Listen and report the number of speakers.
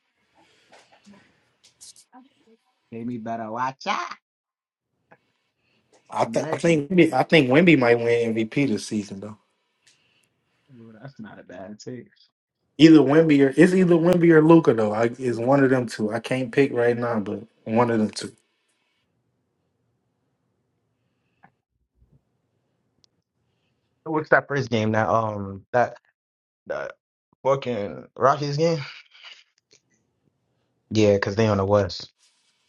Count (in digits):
2